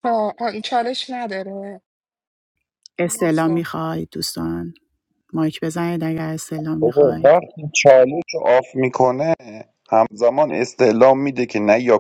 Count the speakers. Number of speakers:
three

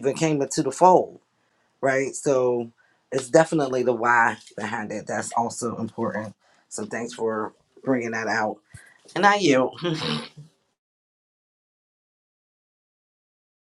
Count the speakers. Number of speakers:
one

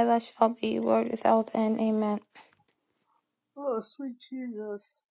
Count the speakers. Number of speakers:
two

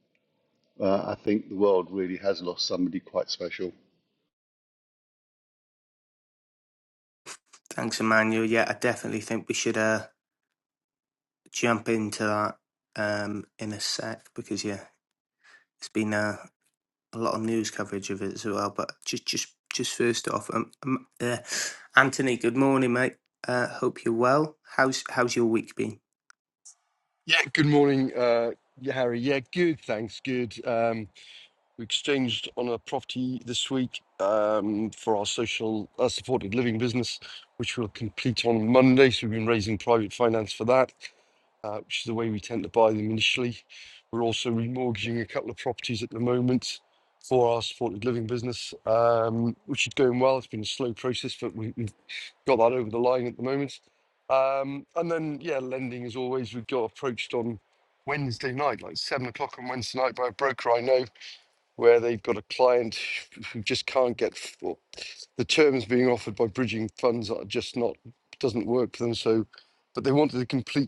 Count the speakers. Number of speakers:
three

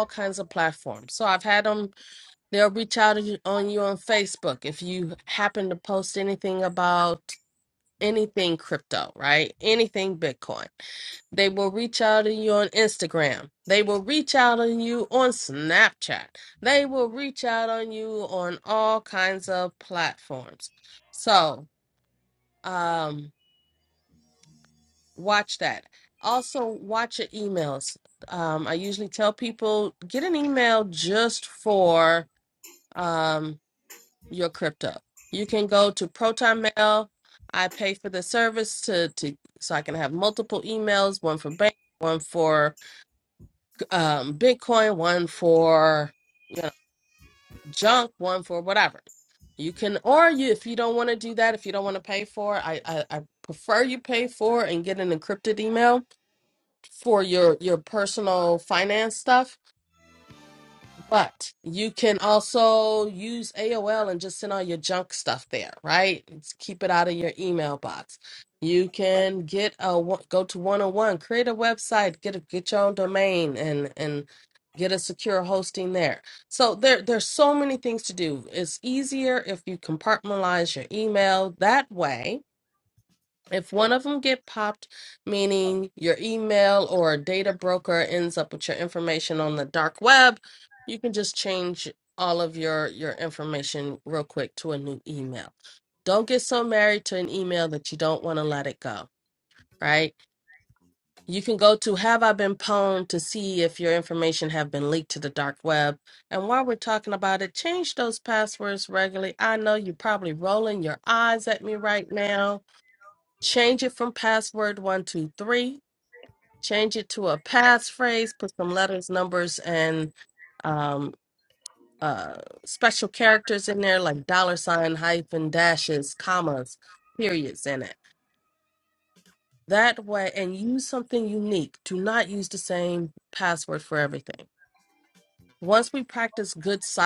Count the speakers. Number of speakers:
one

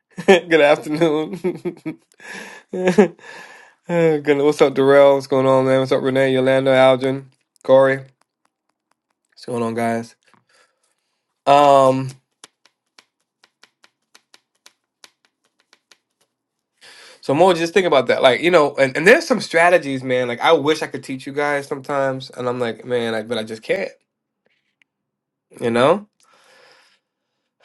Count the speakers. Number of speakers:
one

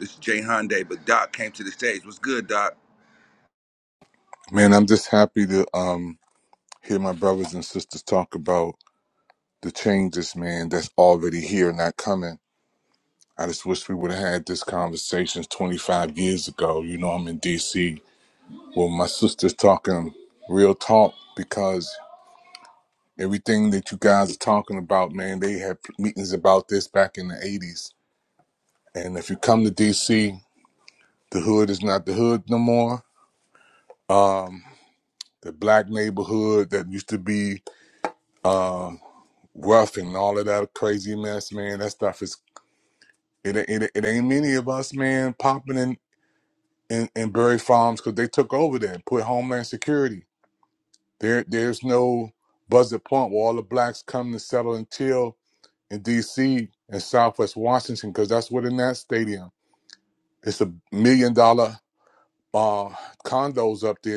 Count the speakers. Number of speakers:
two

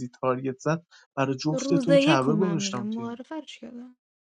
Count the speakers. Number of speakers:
two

